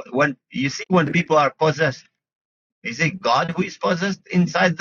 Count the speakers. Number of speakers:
one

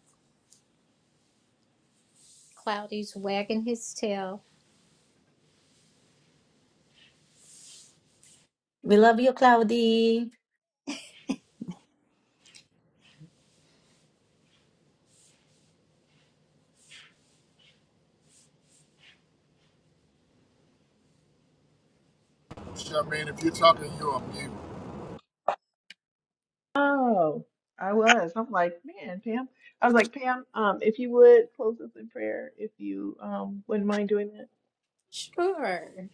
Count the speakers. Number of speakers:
four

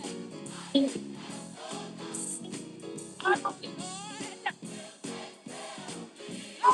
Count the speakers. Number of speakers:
zero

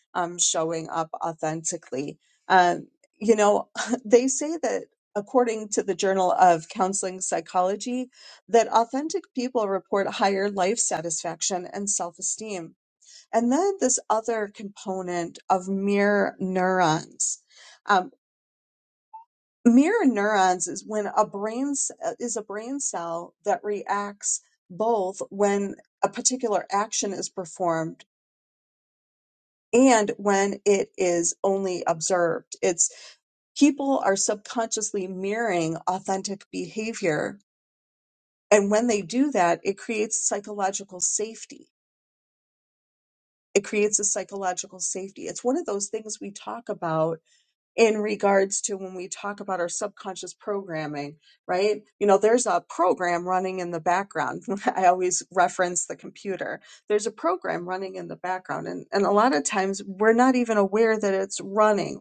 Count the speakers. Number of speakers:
one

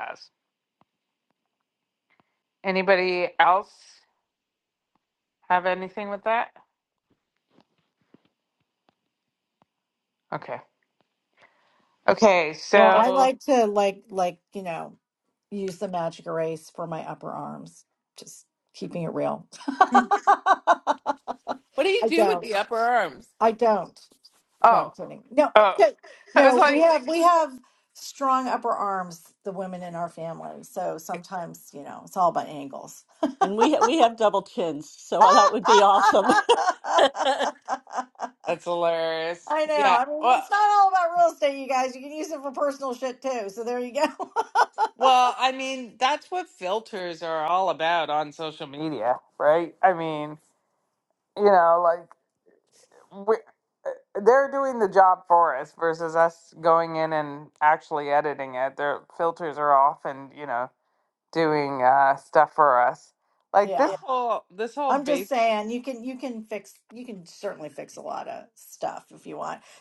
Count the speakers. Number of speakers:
three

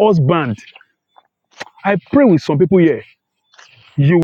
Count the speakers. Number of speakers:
one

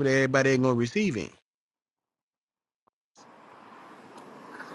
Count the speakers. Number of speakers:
one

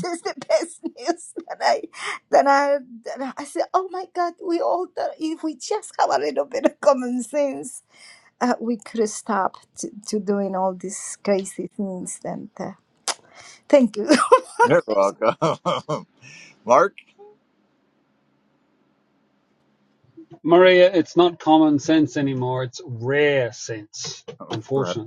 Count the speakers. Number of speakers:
three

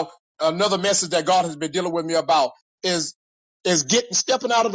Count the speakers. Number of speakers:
one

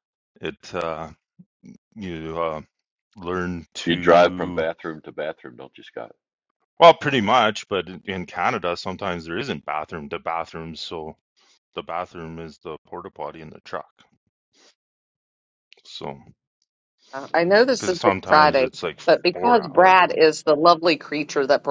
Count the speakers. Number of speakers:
three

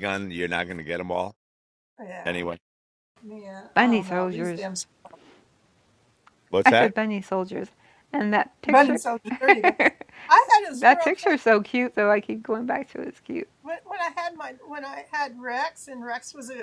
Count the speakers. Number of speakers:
three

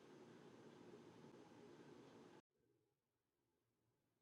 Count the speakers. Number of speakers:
zero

